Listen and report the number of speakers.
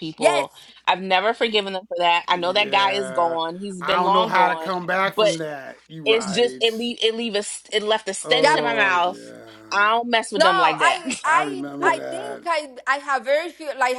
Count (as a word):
three